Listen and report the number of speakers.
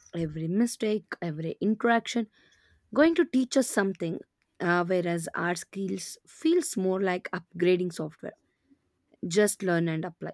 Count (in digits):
1